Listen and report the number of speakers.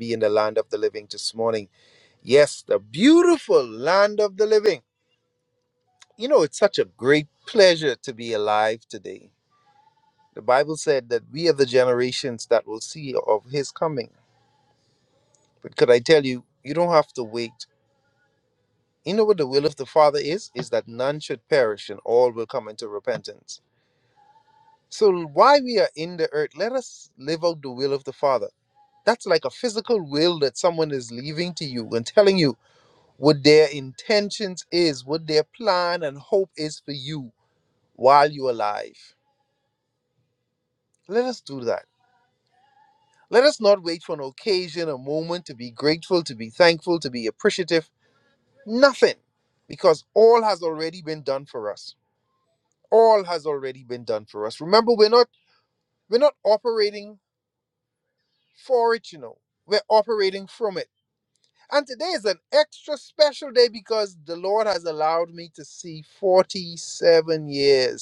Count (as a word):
one